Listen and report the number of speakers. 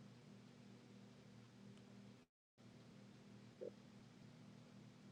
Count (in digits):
0